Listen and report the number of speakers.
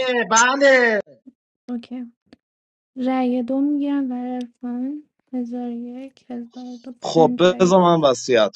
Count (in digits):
3